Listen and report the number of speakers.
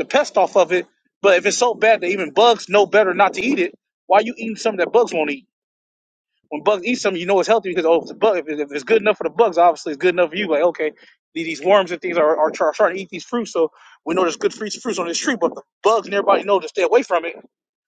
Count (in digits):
1